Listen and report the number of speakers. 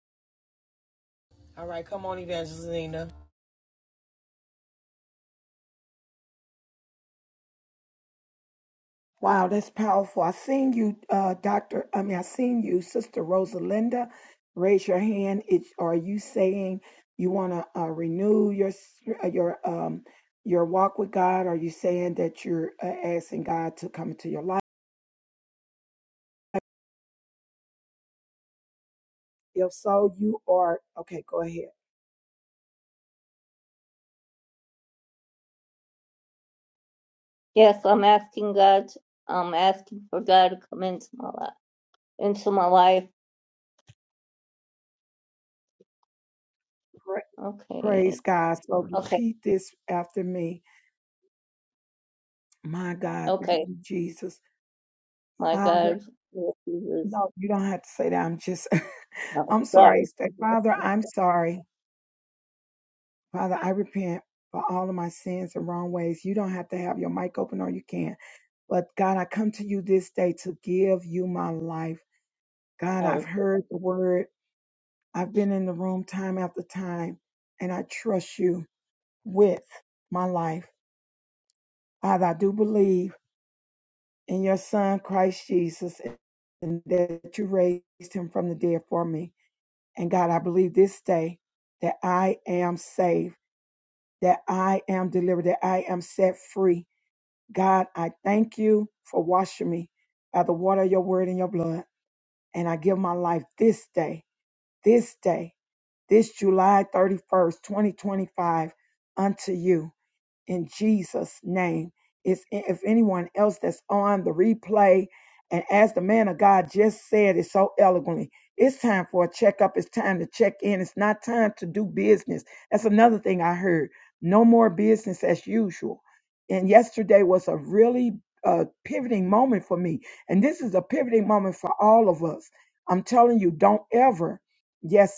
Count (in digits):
3